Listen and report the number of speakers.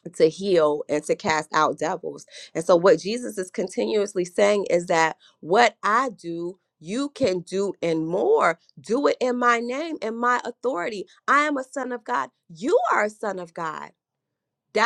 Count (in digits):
1